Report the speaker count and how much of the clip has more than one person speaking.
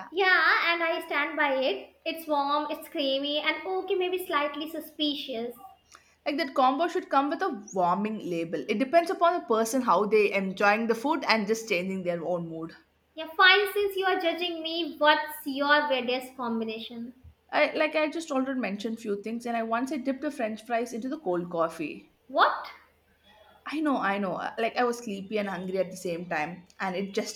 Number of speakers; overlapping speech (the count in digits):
2, no overlap